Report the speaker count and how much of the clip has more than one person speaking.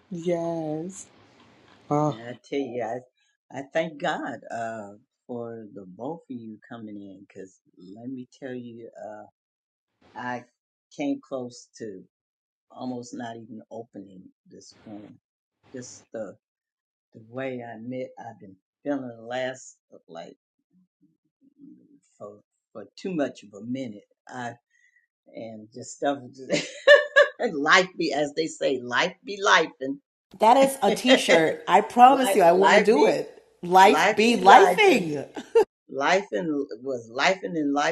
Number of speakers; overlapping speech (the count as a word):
three, about 6%